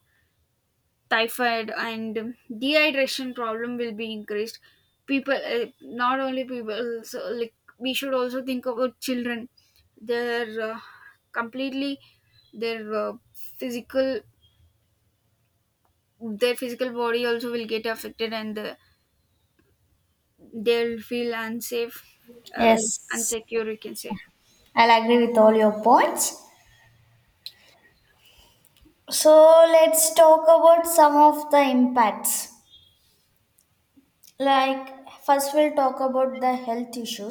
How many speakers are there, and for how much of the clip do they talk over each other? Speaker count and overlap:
2, about 1%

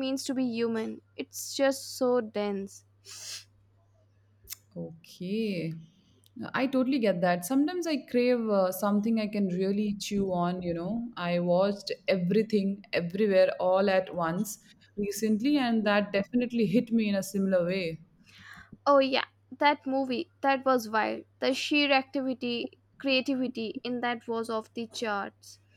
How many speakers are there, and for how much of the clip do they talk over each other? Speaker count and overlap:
2, no overlap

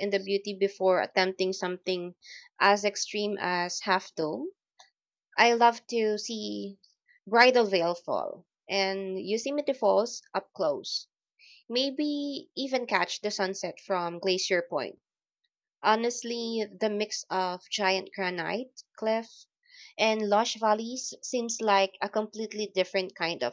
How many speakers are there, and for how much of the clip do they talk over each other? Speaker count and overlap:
1, no overlap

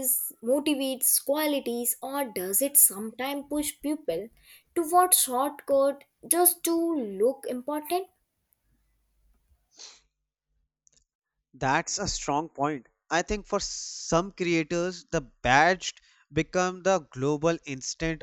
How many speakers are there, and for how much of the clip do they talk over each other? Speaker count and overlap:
2, no overlap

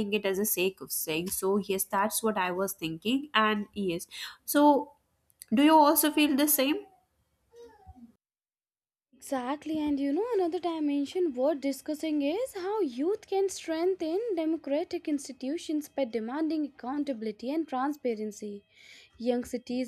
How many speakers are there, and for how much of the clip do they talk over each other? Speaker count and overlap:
2, no overlap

